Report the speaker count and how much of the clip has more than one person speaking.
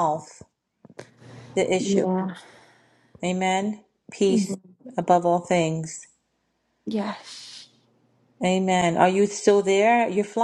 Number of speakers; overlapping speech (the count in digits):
2, about 2%